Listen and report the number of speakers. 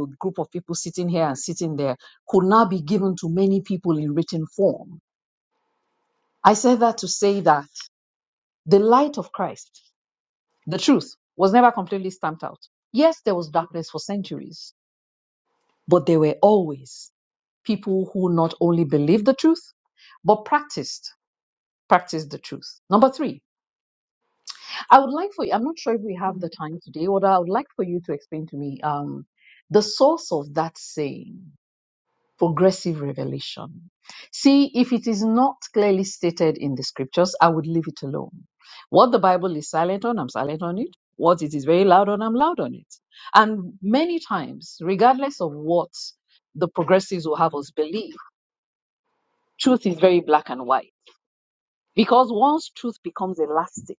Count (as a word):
one